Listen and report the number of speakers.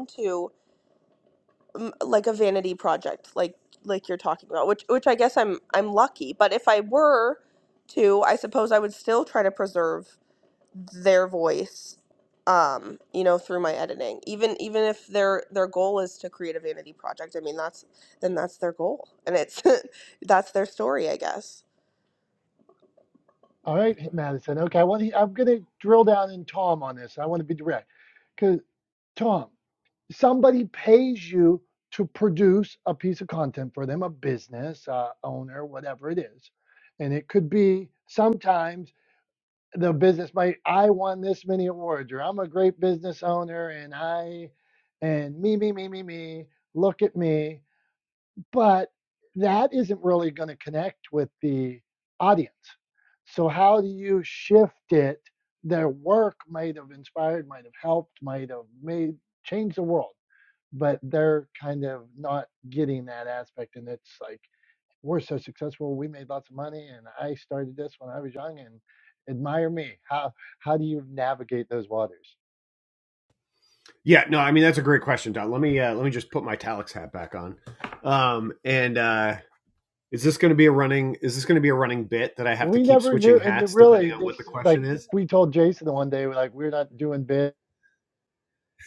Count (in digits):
3